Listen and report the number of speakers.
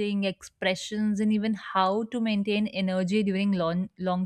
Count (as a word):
one